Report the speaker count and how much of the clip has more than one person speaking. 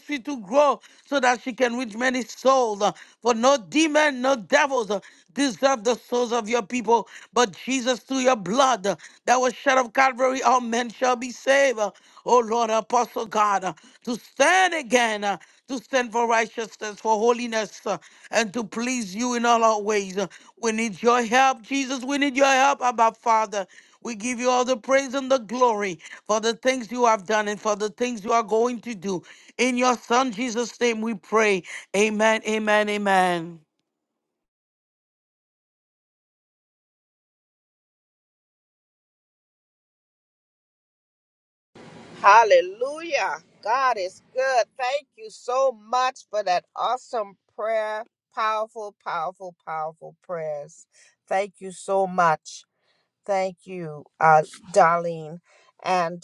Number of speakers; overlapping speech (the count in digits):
2, no overlap